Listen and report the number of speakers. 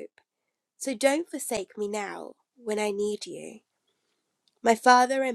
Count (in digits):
1